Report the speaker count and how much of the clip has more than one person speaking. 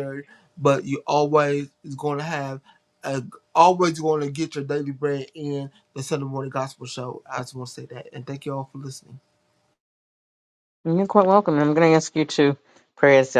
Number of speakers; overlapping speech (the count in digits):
2, no overlap